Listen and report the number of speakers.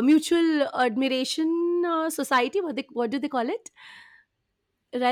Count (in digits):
1